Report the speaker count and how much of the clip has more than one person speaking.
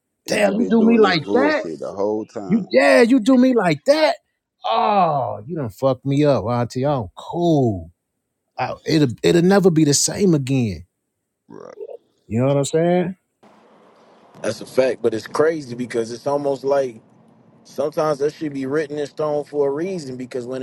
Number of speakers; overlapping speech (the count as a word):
three, about 8%